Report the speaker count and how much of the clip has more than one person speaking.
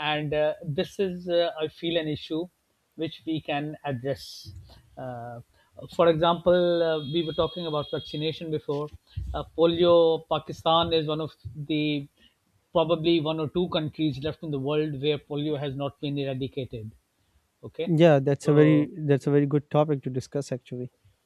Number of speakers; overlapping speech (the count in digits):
2, about 2%